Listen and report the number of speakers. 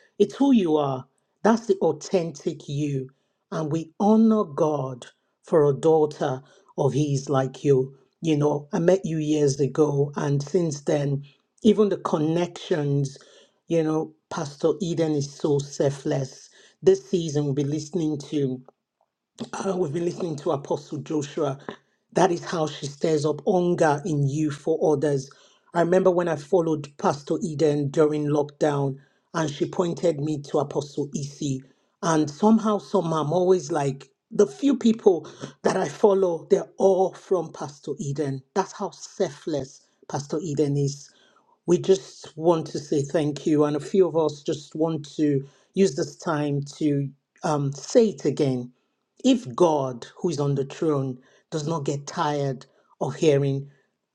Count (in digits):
1